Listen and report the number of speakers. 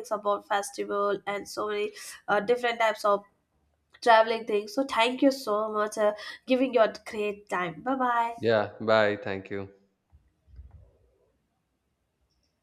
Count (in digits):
2